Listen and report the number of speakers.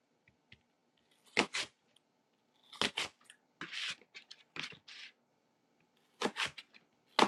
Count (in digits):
0